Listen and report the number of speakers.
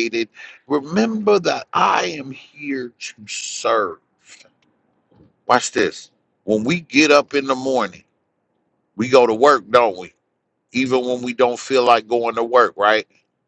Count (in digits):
1